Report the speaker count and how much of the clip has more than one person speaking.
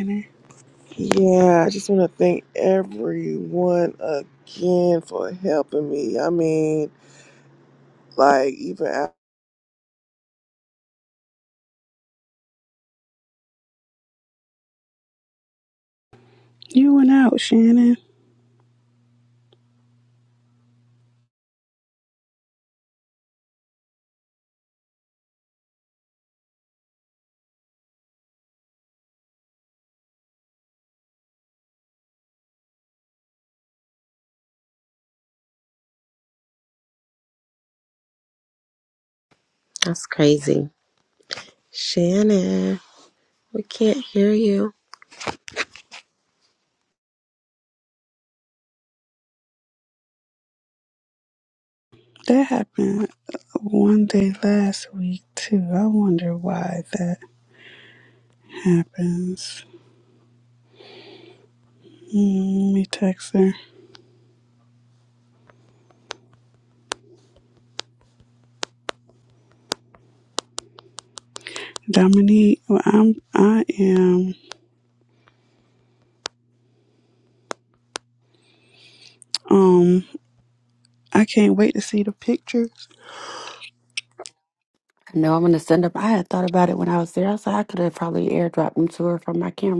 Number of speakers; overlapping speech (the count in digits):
4, no overlap